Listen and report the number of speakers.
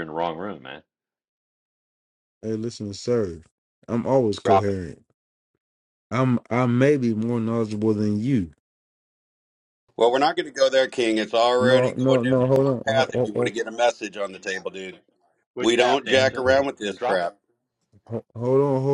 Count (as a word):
three